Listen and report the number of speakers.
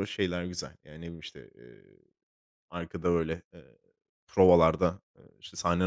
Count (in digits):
1